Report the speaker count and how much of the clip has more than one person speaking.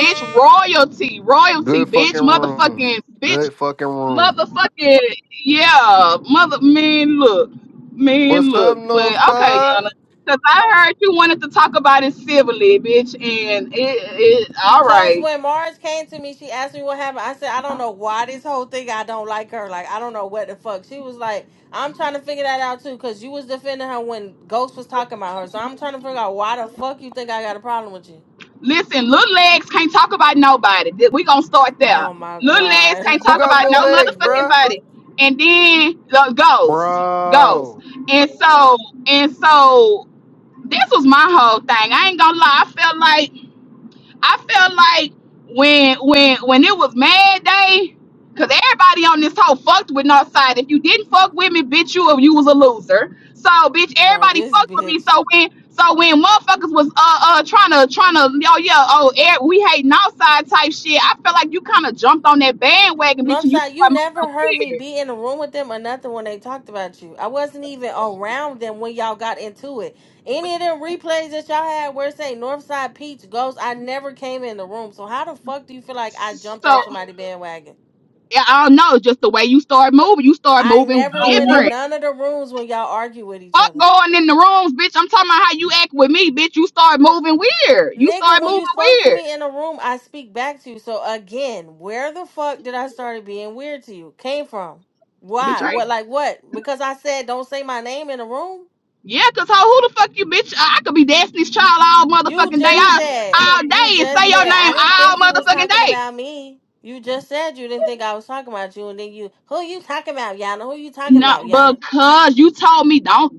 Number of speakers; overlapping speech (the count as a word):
three, about 15%